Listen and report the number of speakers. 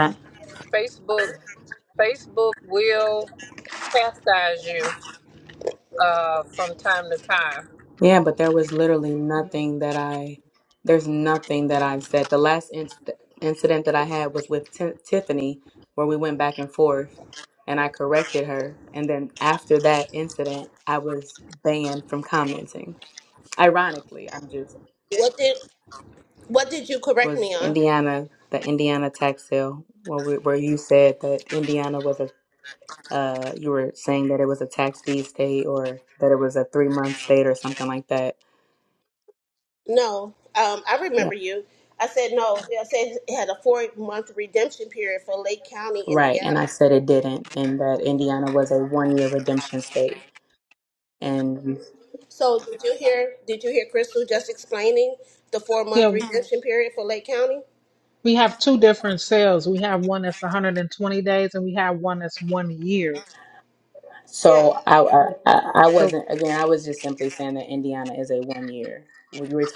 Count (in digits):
4